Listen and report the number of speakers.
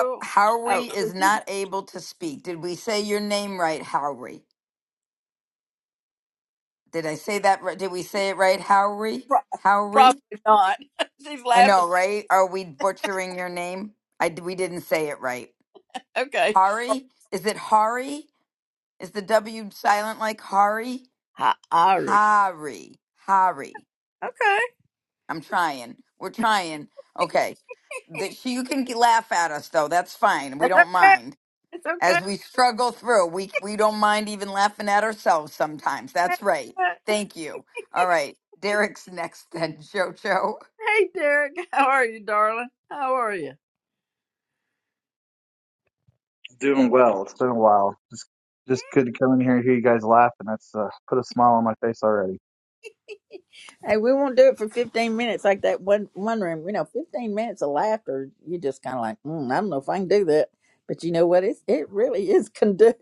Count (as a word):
three